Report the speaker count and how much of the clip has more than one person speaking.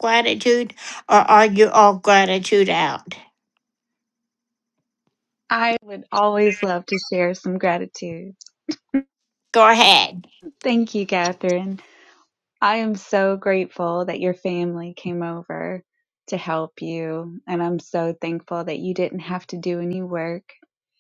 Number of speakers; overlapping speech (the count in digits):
2, no overlap